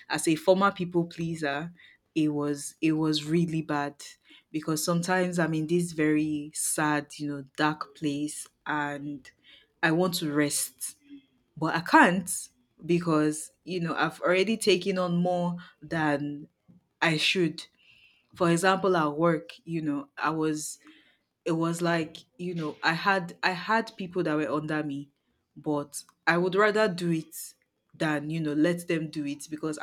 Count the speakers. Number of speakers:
1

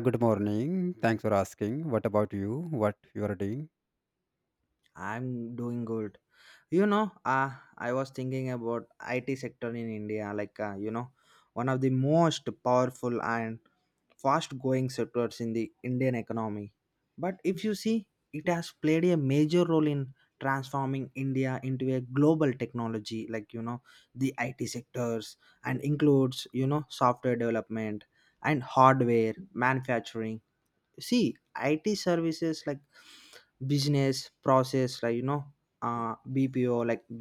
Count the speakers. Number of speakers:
2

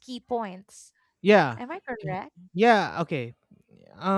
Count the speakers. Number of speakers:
2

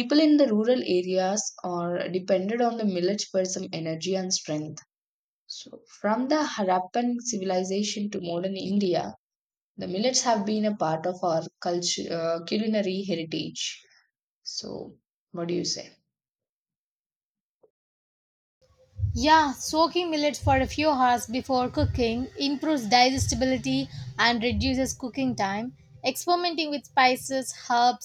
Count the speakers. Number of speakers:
2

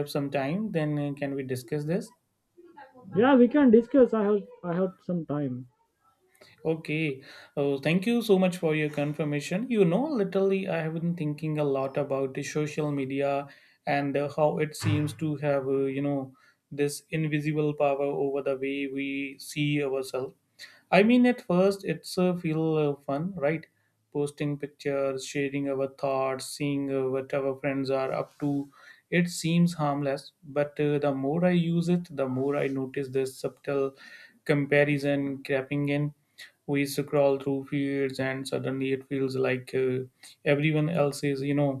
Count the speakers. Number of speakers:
2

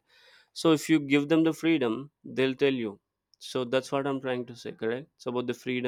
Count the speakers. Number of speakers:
1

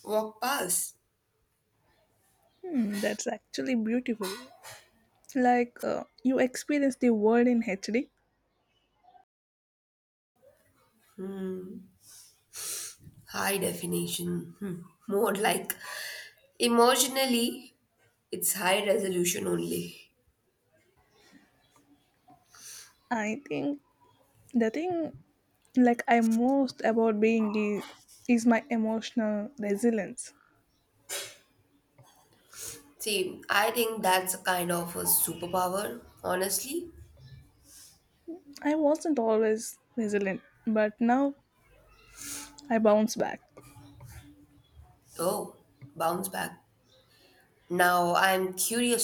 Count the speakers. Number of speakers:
2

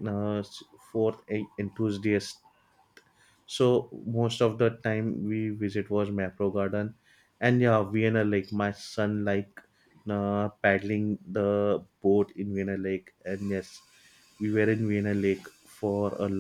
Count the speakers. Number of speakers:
1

